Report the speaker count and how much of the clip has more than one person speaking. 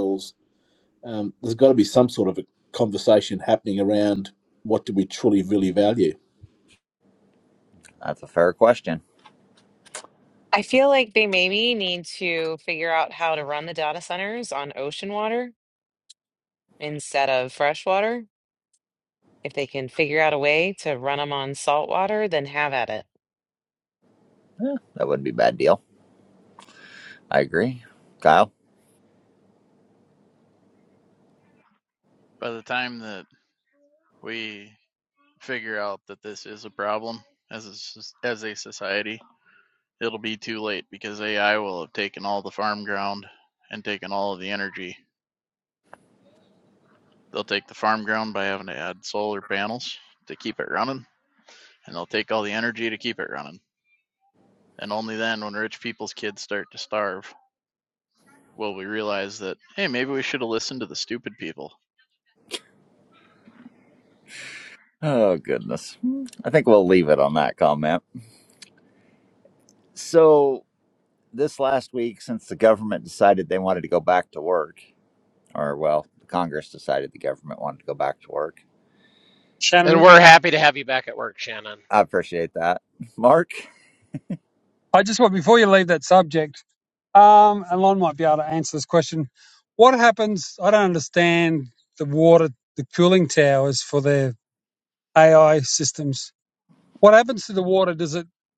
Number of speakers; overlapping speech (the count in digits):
6, under 1%